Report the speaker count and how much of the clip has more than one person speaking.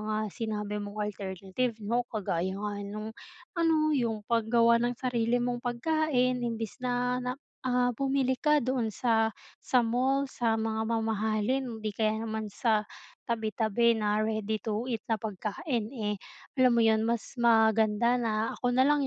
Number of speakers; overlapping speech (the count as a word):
one, no overlap